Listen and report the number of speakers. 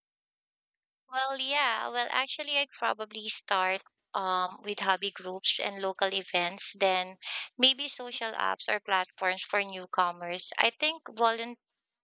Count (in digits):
1